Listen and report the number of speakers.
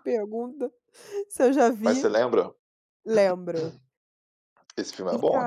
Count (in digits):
2